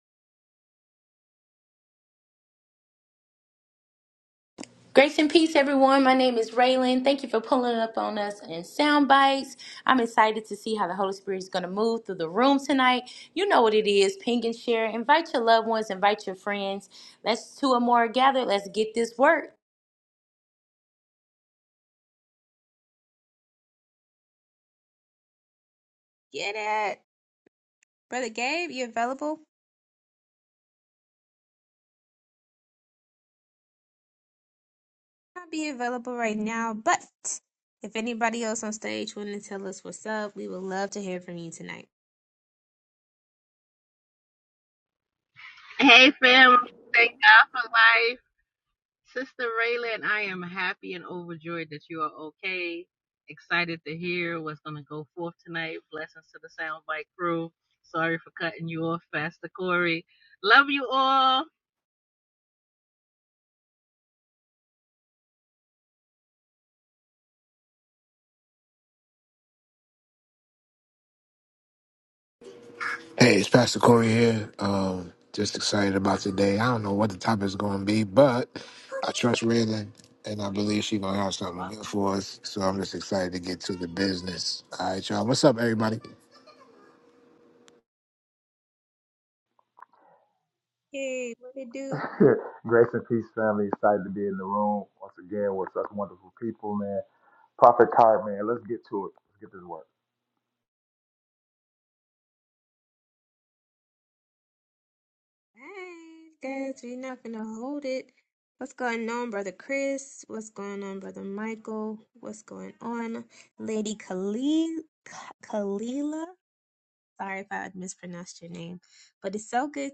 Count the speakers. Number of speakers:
5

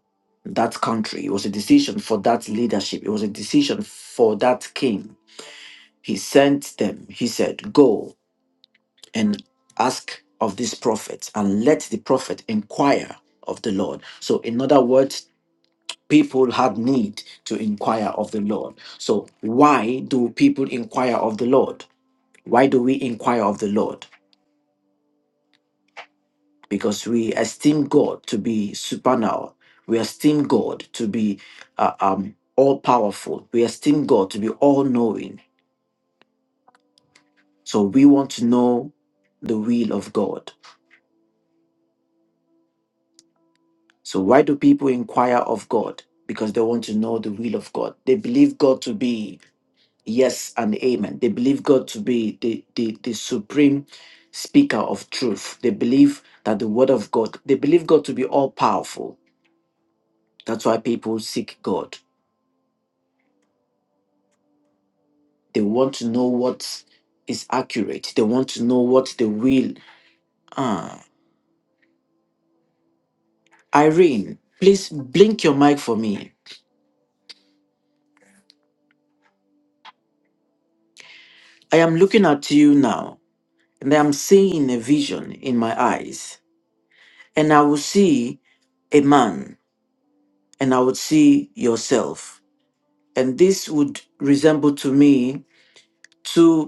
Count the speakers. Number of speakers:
1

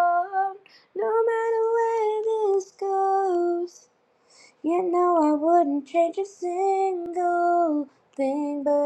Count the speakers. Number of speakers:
1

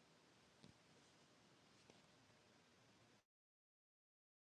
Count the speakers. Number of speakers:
0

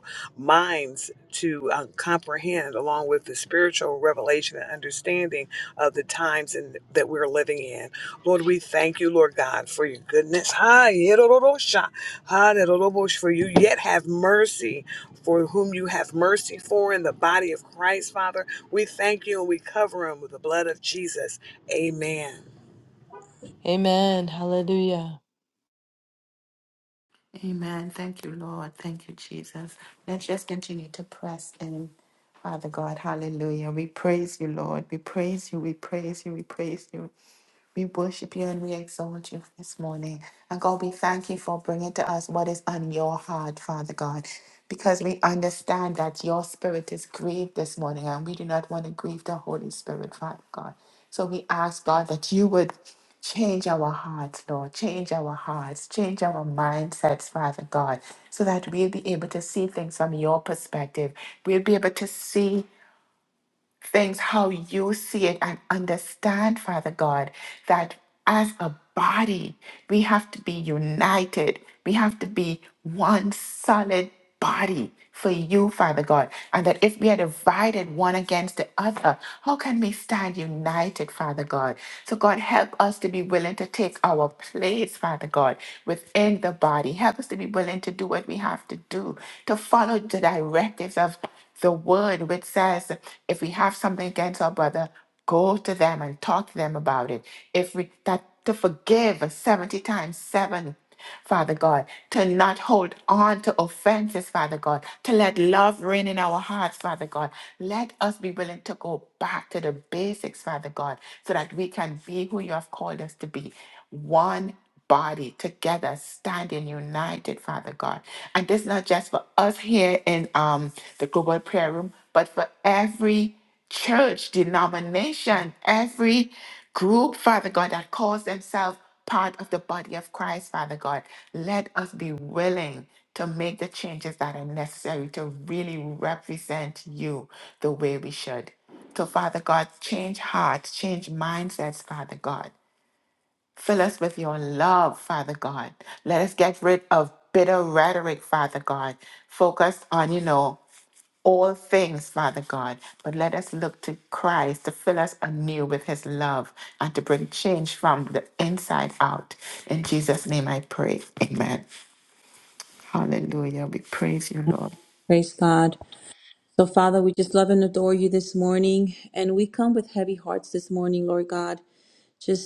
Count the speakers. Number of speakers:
4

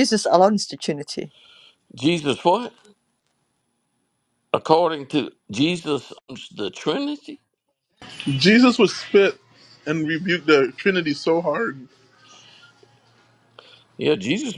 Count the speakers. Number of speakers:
3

